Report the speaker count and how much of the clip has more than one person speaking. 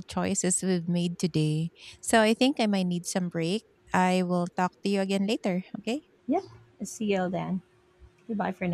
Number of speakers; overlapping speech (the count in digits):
2, no overlap